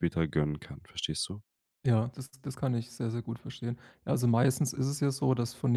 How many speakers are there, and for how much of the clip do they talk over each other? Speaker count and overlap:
2, no overlap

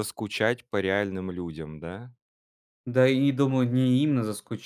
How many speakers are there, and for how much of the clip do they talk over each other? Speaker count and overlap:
2, no overlap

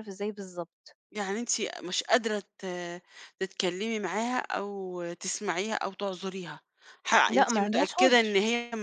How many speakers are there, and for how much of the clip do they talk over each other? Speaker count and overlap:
2, about 13%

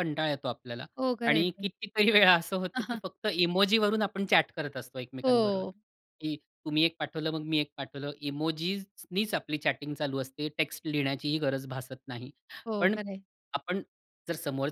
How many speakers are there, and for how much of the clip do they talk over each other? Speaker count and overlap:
2, about 7%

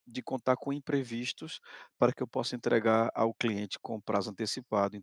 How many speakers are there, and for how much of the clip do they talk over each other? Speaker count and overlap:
1, no overlap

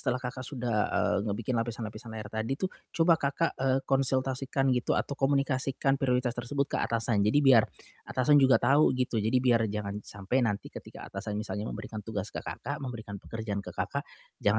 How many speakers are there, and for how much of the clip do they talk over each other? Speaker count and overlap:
1, no overlap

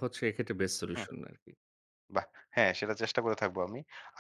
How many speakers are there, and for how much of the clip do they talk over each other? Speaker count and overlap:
2, about 3%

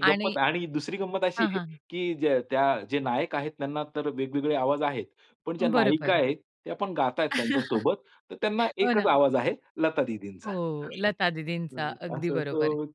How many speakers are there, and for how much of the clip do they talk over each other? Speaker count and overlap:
2, about 18%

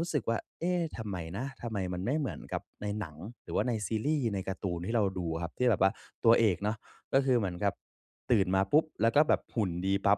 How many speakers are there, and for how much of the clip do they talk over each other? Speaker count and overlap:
1, no overlap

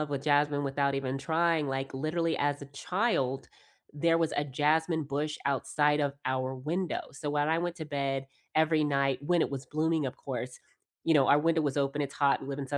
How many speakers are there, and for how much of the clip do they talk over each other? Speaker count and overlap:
1, no overlap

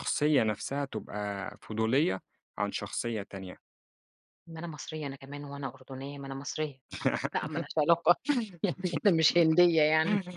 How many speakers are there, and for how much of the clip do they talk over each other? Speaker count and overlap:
2, no overlap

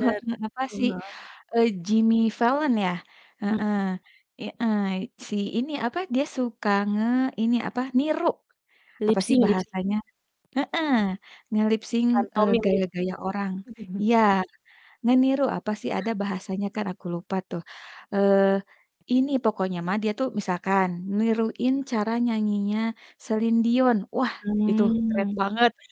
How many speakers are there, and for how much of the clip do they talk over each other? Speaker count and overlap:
2, about 10%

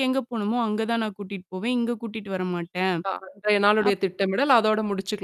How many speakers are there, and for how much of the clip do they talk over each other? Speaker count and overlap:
2, about 2%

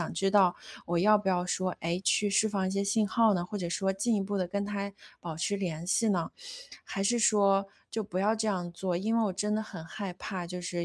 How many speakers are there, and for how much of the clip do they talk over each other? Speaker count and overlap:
1, no overlap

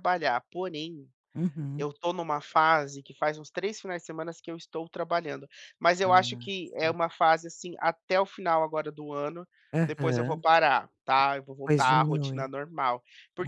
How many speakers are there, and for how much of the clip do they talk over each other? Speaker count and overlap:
2, about 15%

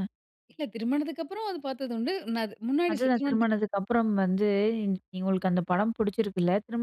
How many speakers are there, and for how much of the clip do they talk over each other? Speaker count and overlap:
2, about 8%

